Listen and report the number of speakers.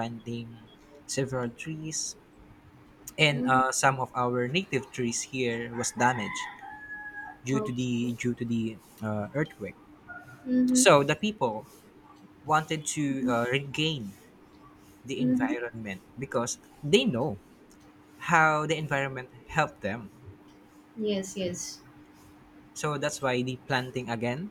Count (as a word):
two